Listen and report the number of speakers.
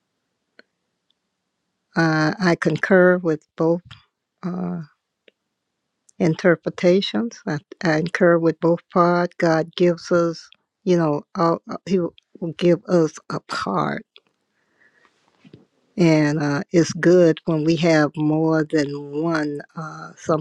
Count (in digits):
1